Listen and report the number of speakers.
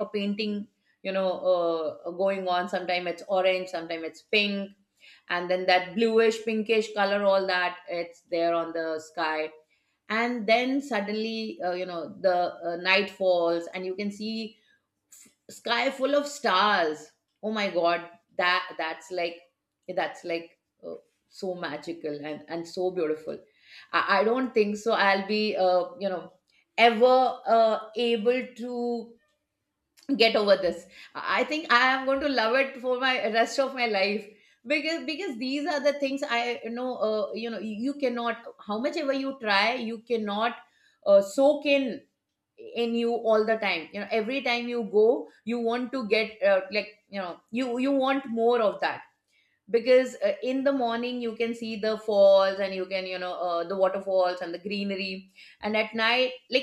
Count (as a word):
one